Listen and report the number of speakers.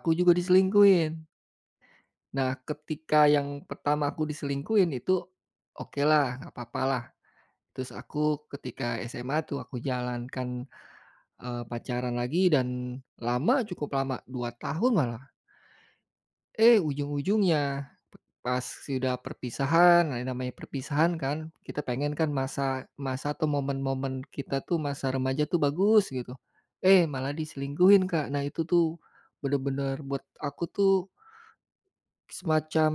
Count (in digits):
1